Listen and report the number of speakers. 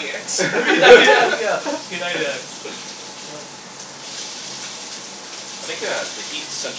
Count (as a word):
two